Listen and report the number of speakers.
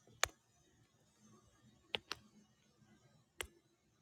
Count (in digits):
0